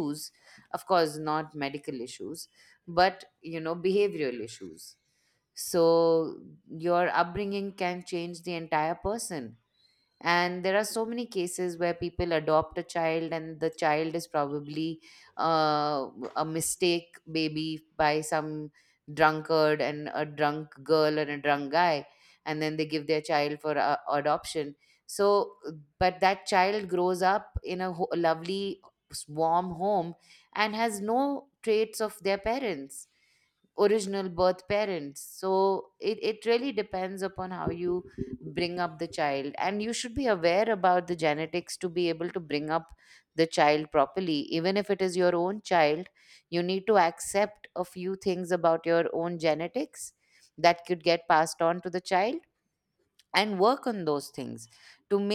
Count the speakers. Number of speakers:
1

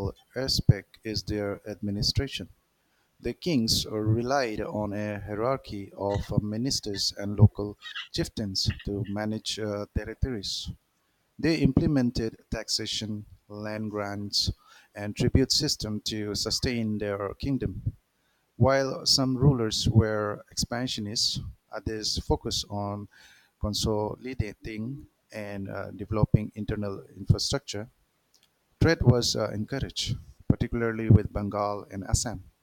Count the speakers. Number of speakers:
1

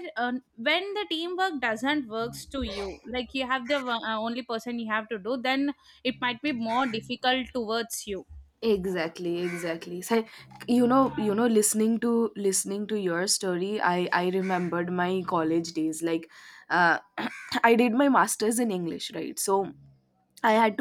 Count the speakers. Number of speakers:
2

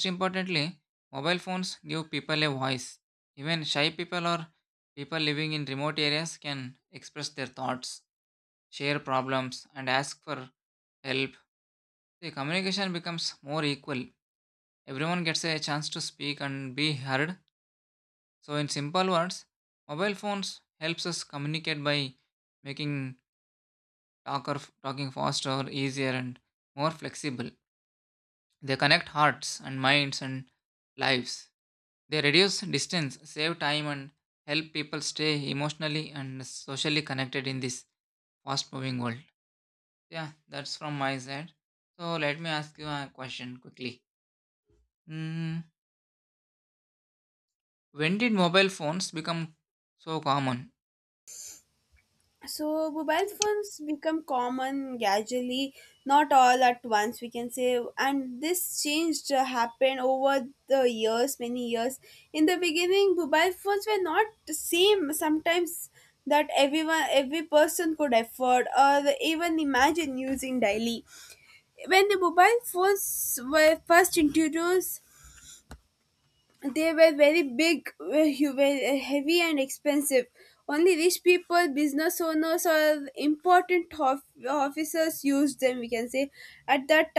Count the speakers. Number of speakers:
2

